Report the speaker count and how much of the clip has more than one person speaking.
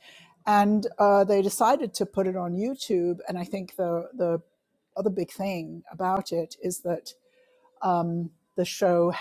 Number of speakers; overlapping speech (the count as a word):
one, no overlap